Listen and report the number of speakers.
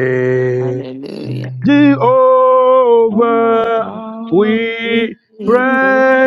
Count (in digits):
3